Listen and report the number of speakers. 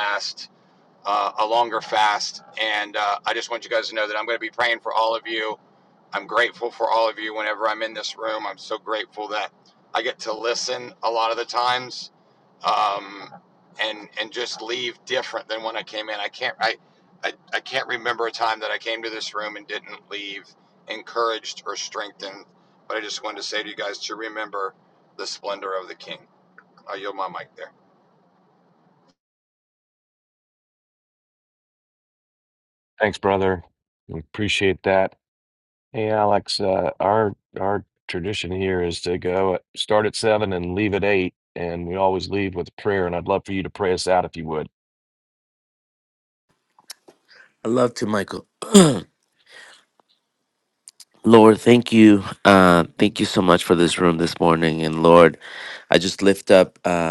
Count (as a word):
three